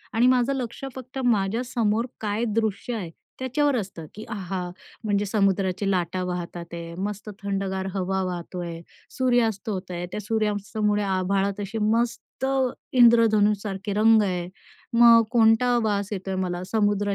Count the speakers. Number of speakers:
1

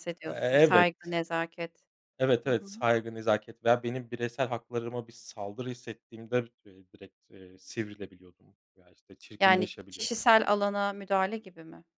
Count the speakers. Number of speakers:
2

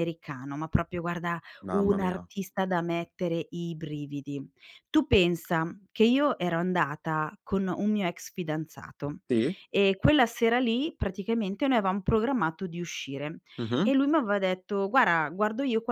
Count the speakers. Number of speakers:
2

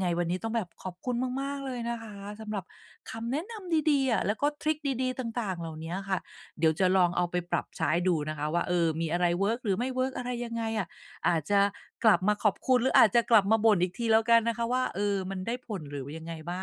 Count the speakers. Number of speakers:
1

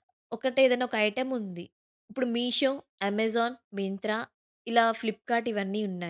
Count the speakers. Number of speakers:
1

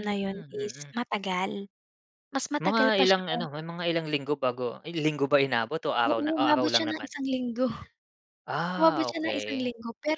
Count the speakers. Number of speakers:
2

